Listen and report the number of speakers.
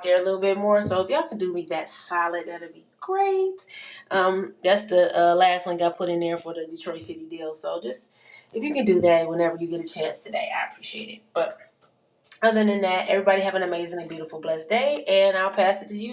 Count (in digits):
1